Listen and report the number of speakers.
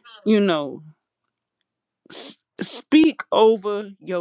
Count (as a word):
one